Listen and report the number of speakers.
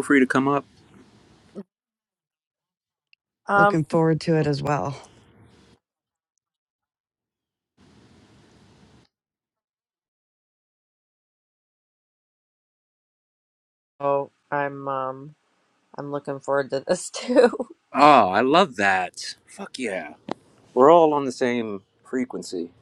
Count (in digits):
3